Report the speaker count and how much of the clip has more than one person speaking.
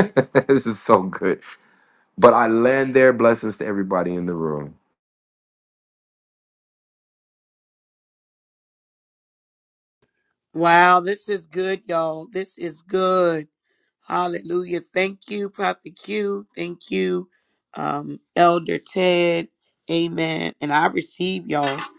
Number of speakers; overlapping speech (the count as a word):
two, no overlap